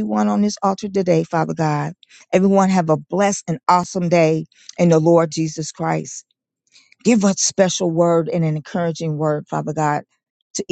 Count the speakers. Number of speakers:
one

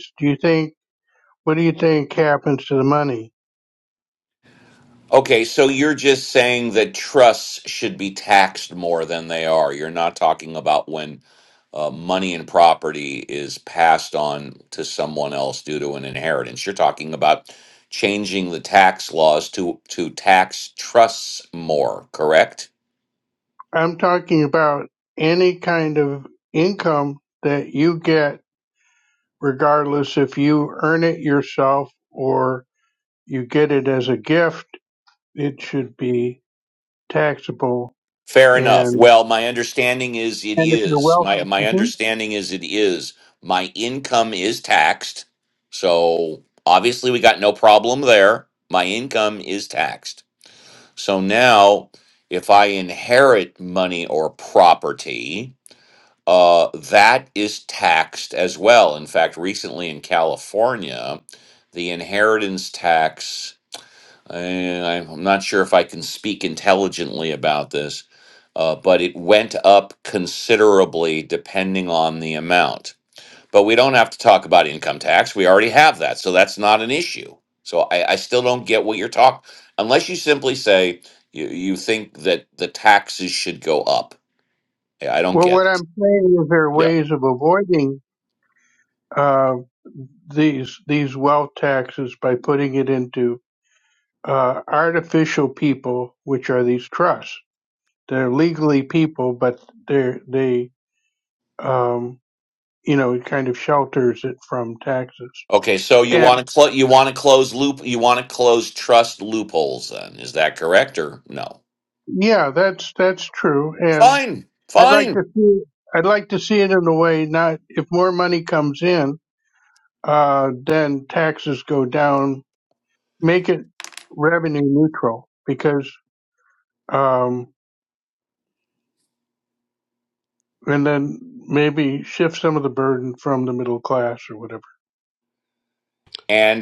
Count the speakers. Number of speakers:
two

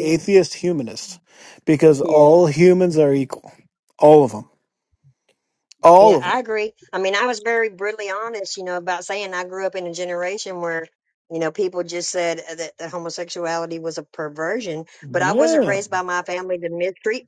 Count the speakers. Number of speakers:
two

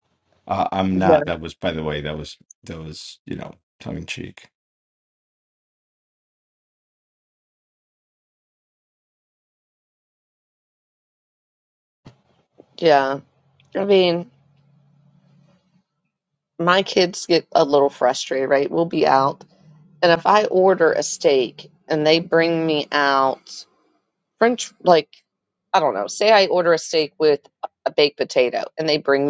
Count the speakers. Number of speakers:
two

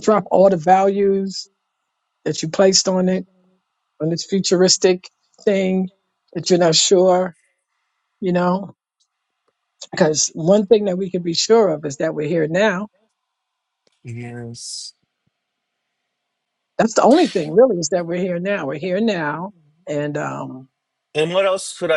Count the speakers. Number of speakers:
two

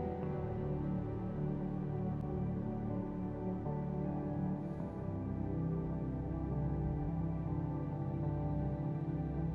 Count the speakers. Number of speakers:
zero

